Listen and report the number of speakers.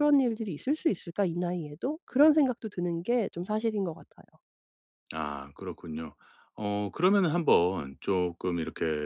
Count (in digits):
2